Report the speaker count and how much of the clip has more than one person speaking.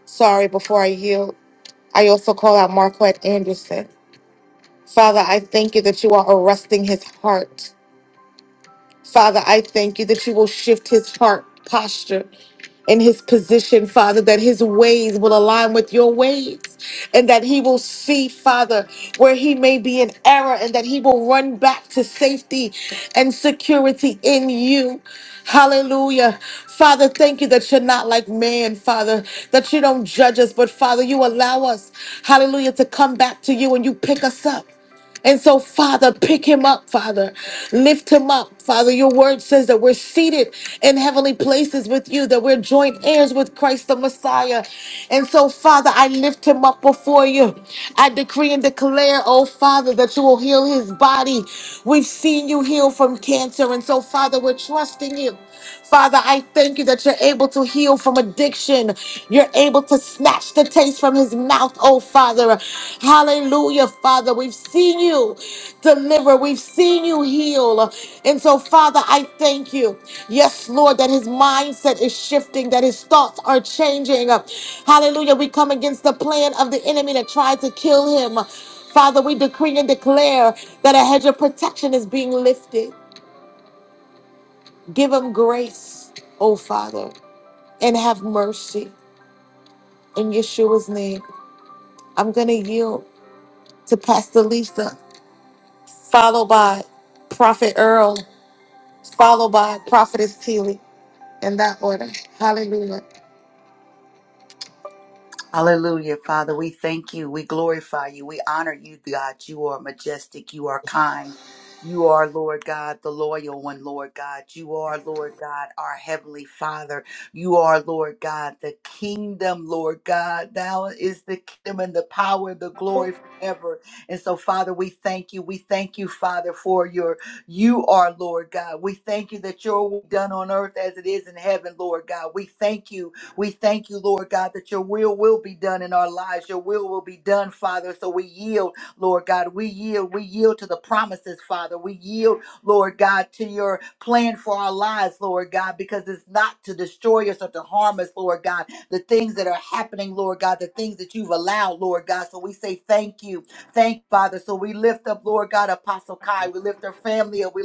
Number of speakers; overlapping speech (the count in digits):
2, no overlap